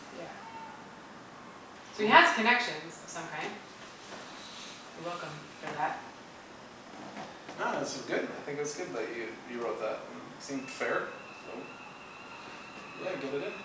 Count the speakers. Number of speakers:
2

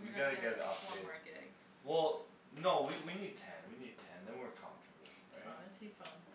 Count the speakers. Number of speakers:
2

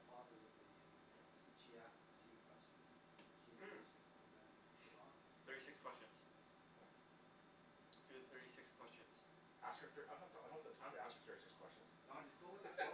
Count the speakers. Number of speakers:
3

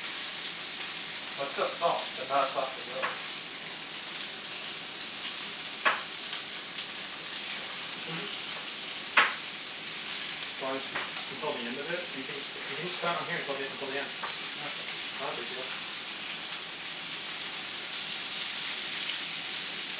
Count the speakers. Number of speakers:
2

